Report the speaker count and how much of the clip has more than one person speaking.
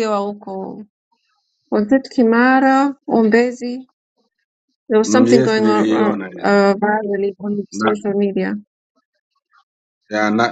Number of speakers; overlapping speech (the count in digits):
2, about 16%